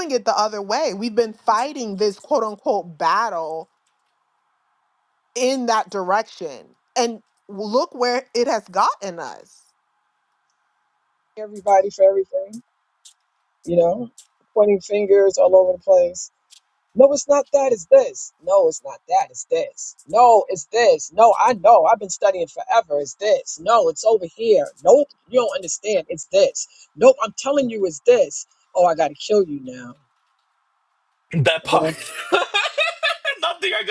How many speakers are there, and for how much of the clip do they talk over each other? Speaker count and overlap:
3, about 1%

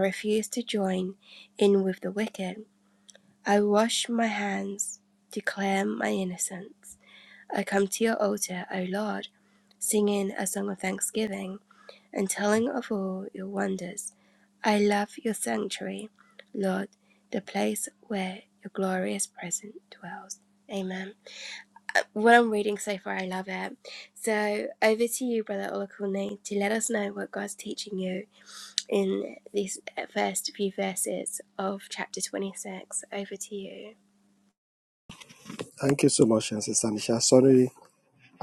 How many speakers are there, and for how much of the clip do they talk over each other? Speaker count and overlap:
2, no overlap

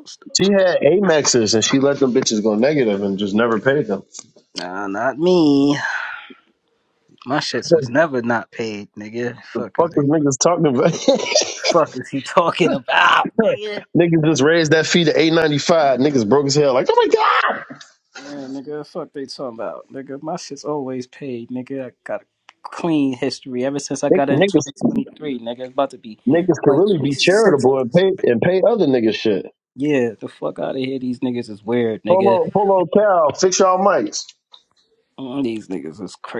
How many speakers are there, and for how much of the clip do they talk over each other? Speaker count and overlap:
2, about 8%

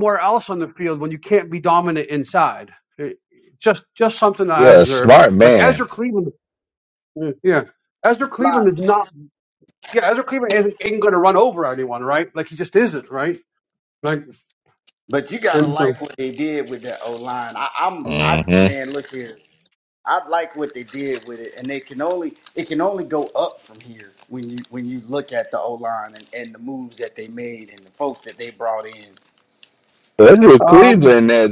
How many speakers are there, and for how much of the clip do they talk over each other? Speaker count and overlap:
3, about 9%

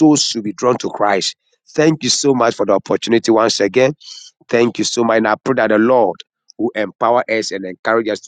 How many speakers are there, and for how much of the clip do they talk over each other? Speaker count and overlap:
1, no overlap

